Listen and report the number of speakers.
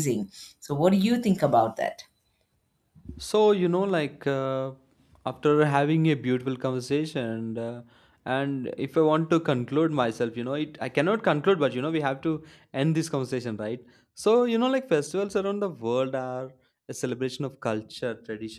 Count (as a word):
two